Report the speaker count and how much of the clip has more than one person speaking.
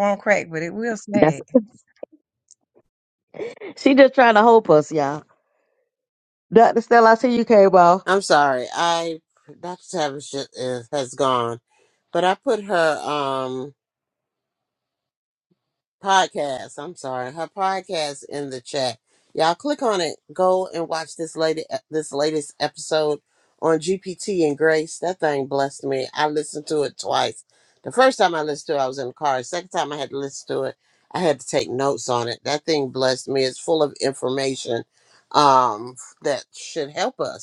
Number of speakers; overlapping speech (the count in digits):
3, about 1%